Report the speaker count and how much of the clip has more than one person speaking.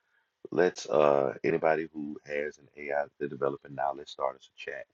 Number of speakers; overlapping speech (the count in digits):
1, no overlap